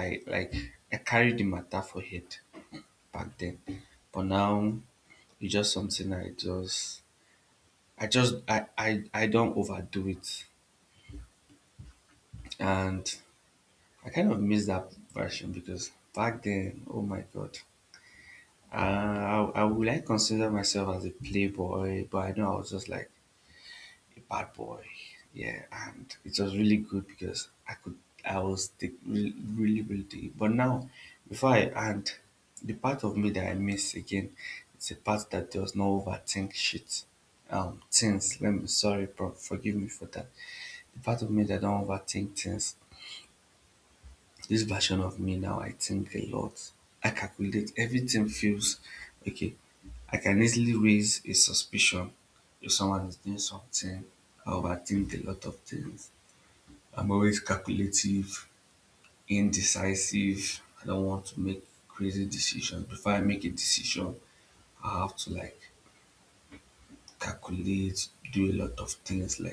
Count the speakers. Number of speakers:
1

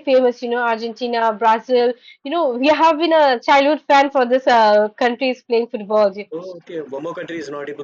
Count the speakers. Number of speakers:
2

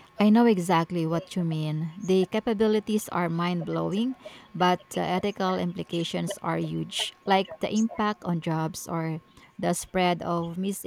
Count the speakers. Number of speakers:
1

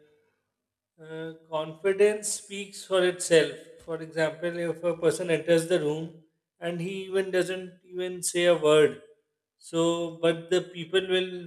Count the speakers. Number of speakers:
1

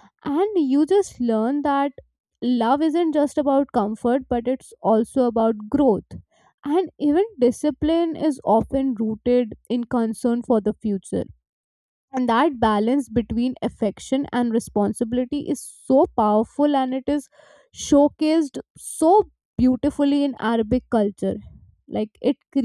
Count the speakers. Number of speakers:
1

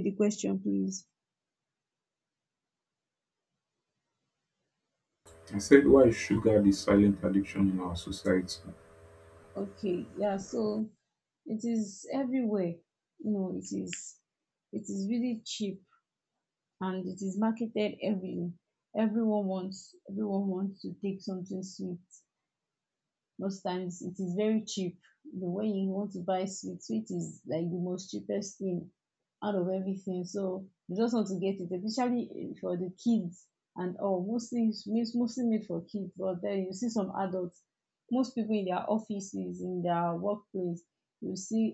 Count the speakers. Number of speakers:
2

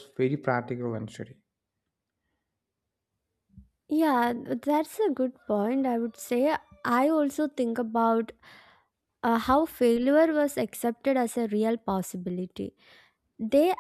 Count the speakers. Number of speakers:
2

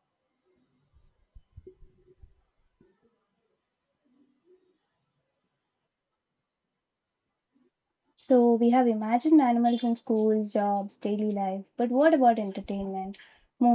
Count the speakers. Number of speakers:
1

